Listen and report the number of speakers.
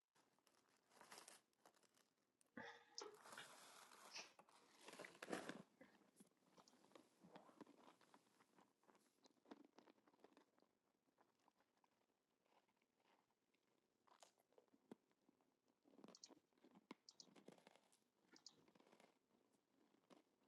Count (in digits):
0